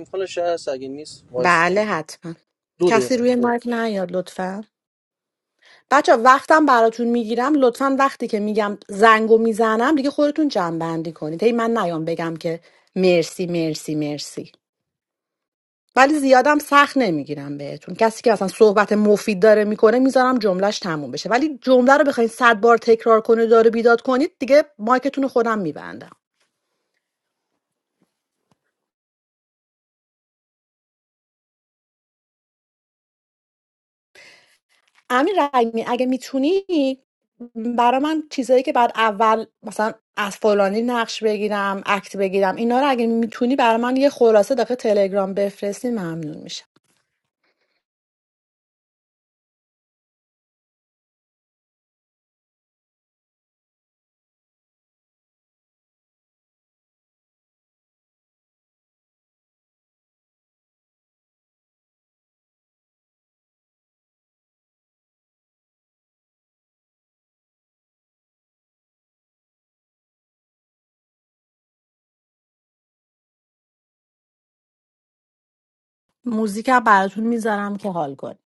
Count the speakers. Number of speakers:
two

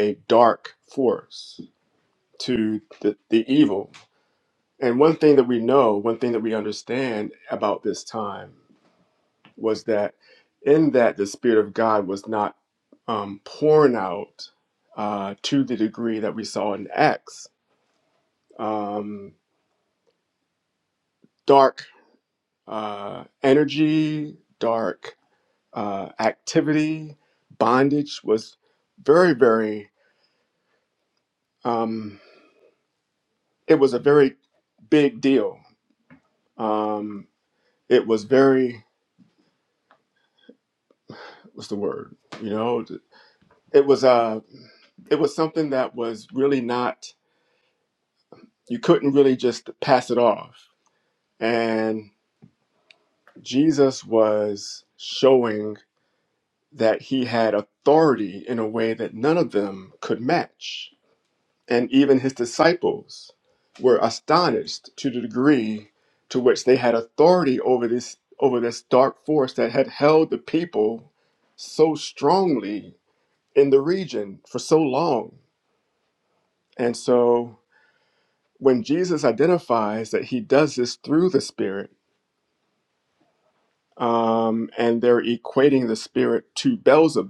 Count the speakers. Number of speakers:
one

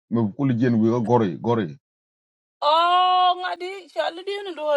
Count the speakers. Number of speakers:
two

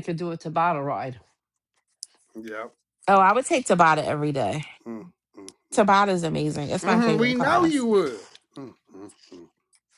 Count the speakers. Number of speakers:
three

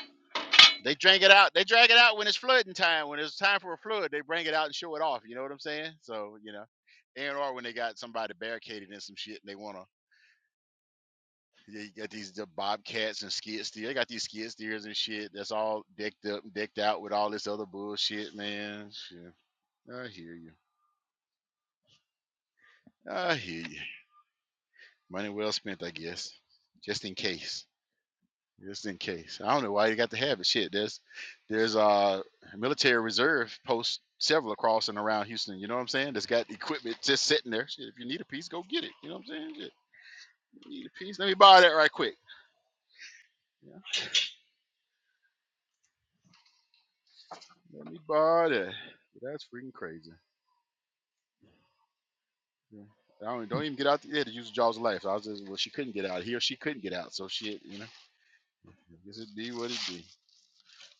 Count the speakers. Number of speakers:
one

